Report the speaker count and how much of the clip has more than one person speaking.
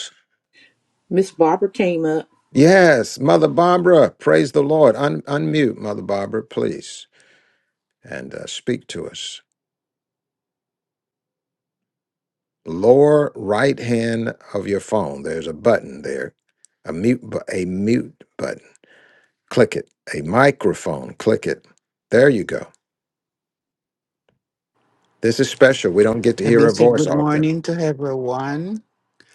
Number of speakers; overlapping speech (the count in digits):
3, about 3%